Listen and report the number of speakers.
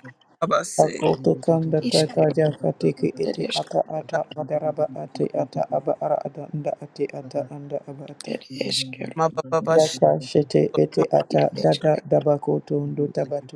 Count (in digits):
3